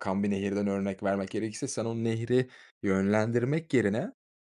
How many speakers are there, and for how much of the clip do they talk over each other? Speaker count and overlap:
1, no overlap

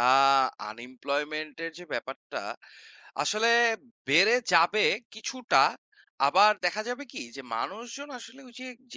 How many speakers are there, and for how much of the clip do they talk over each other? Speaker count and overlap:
1, no overlap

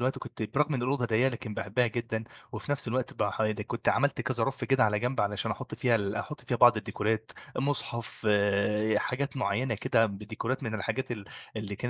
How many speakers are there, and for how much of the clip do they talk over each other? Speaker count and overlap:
1, no overlap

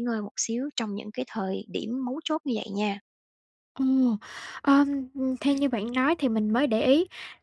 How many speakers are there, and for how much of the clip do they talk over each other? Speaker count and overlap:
2, no overlap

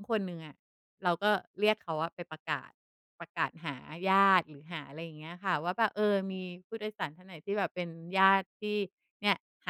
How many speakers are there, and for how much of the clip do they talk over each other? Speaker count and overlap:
1, no overlap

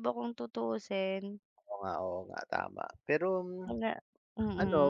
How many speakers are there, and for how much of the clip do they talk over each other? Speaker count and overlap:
2, about 7%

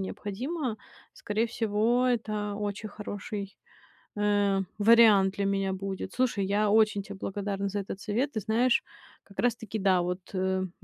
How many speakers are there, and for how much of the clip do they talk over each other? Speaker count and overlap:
1, no overlap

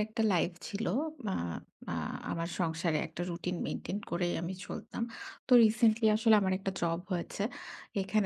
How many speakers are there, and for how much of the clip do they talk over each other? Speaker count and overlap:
1, no overlap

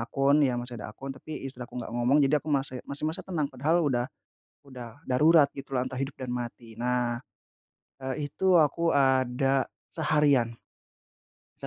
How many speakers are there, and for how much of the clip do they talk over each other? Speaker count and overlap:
1, no overlap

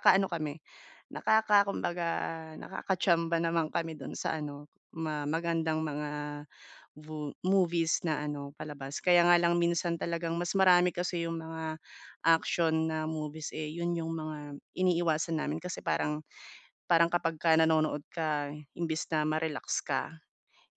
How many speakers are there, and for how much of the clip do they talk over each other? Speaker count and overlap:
1, no overlap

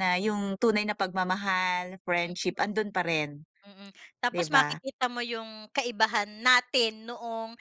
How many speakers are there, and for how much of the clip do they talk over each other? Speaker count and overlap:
2, about 6%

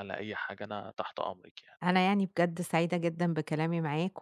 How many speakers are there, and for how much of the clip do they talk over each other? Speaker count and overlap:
2, no overlap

